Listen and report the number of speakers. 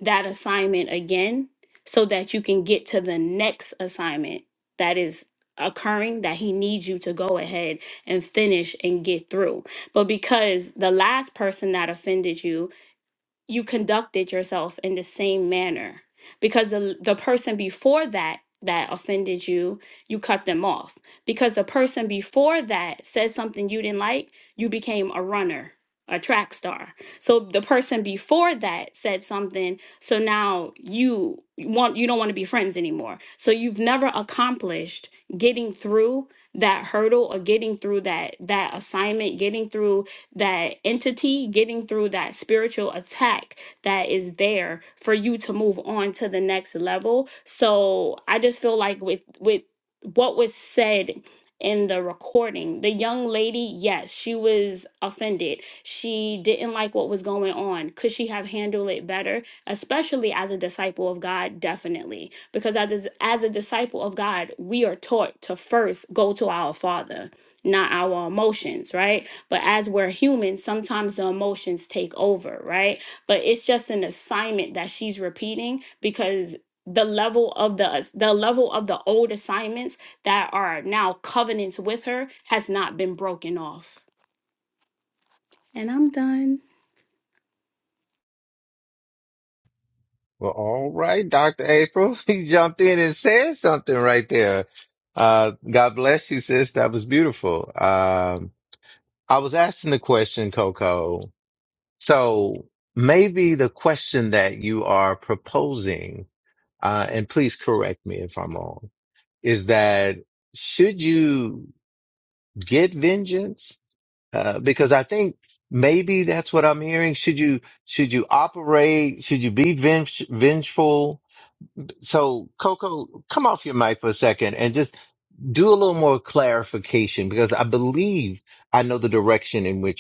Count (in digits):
2